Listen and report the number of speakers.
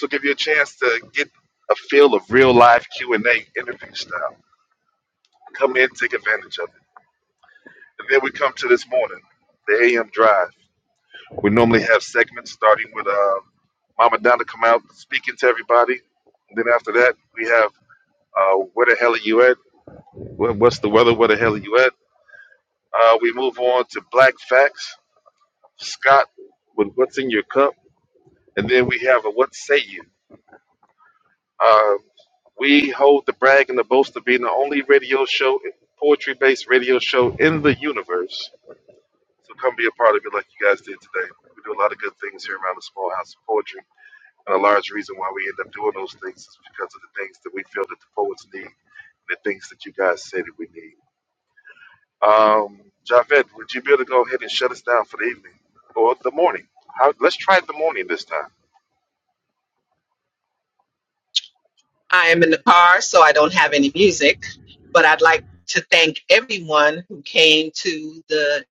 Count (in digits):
2